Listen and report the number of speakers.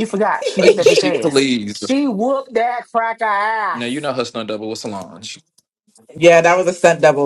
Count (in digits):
3